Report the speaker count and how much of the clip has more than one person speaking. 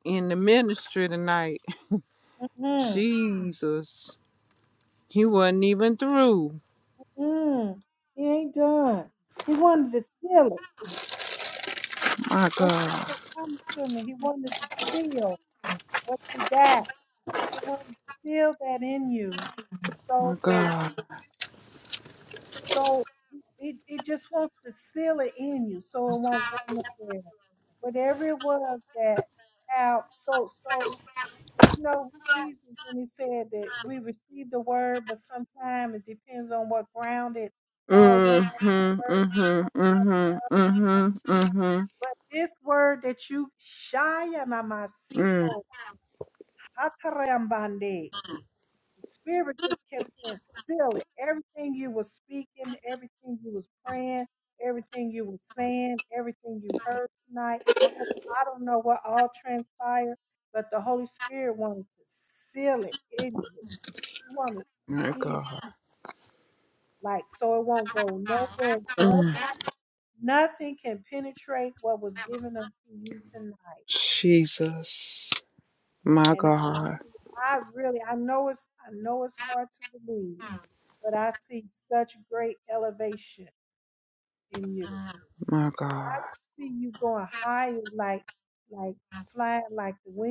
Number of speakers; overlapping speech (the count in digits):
2, about 4%